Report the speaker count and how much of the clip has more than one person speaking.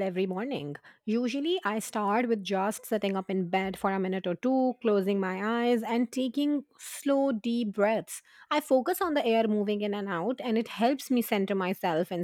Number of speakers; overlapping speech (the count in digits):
1, no overlap